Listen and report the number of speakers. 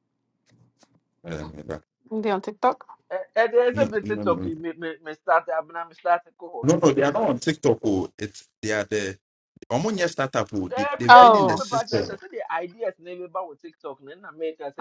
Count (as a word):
three